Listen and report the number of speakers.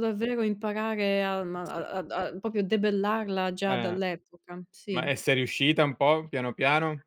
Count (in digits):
2